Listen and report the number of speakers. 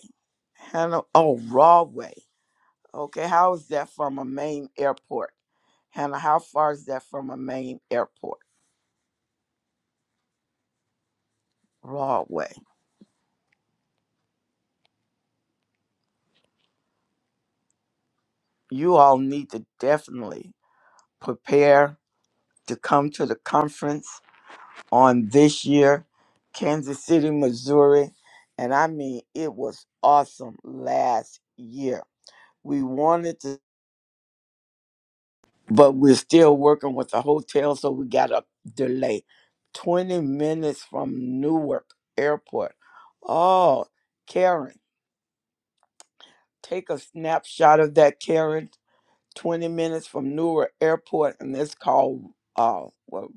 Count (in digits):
1